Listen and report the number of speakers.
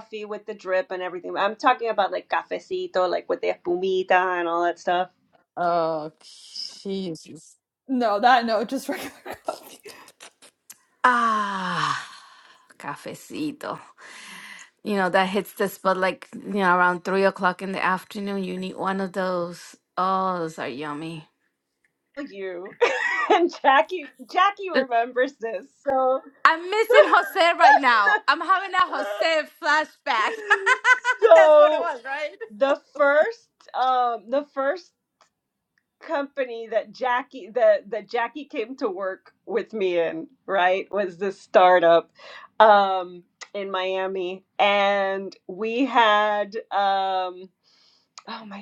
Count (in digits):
3